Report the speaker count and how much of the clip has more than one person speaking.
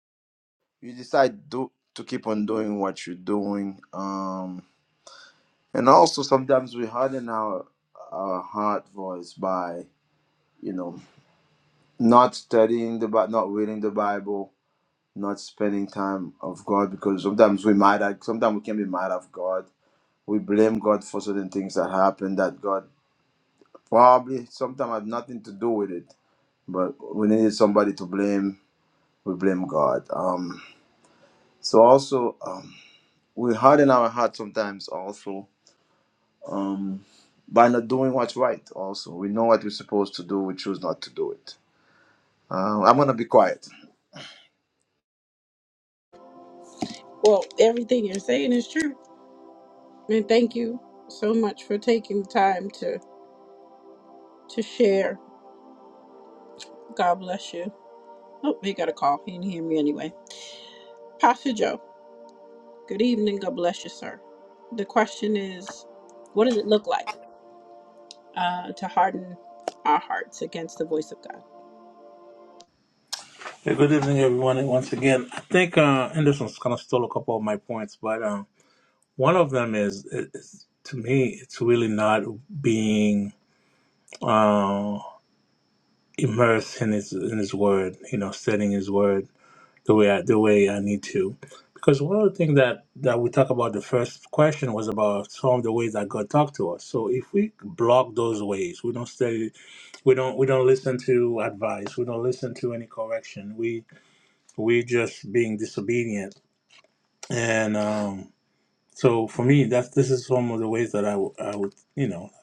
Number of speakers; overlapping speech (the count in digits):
3, no overlap